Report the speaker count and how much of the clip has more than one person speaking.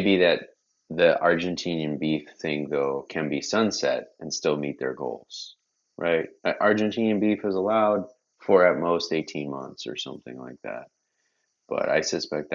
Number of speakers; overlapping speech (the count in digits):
1, no overlap